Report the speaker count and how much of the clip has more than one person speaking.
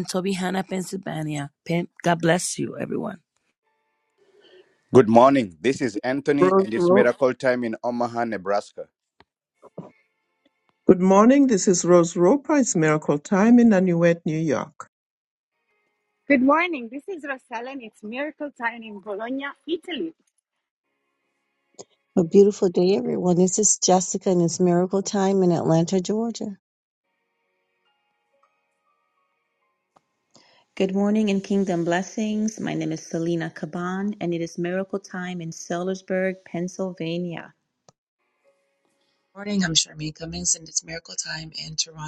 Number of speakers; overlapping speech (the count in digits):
7, about 2%